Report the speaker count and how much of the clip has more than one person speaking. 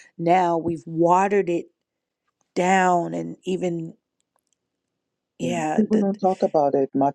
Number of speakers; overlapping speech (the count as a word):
two, about 9%